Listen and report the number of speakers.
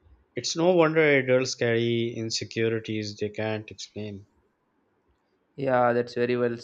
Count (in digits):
2